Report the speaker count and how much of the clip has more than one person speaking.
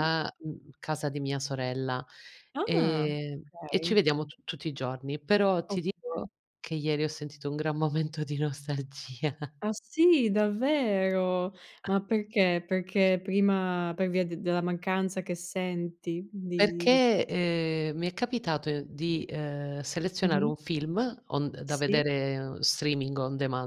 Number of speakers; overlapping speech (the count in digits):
2, about 9%